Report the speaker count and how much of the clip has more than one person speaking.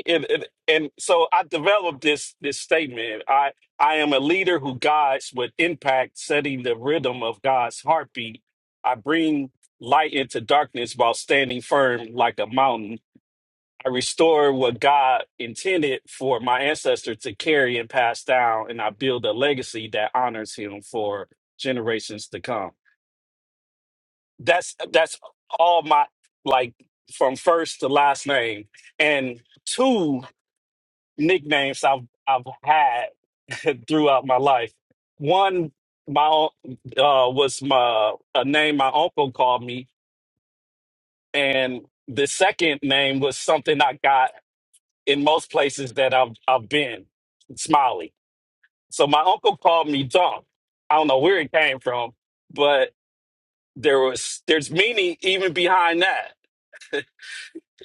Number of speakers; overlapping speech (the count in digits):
1, no overlap